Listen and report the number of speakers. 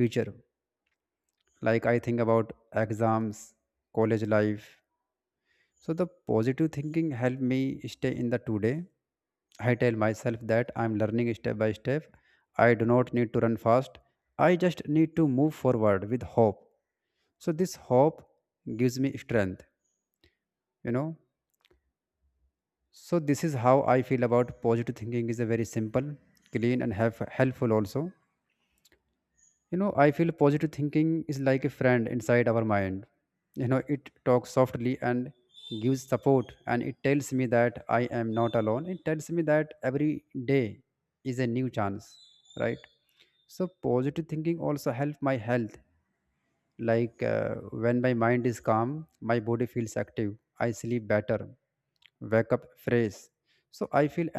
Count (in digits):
1